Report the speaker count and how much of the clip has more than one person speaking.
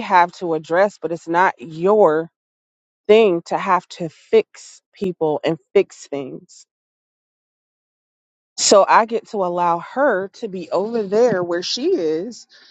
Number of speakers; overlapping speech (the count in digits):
1, no overlap